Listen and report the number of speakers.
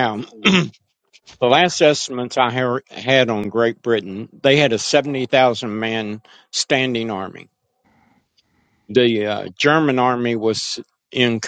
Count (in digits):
1